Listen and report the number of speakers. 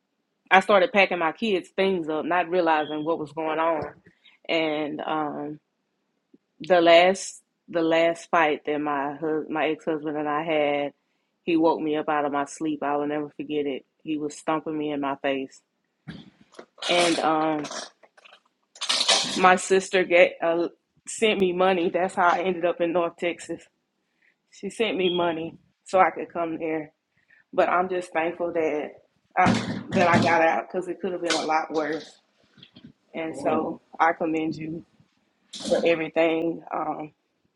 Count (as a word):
one